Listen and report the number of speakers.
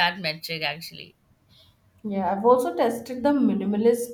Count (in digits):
2